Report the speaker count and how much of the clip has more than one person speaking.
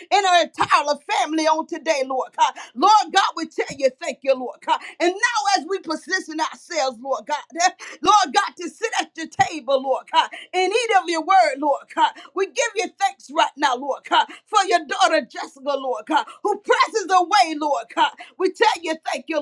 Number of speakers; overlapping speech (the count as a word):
one, no overlap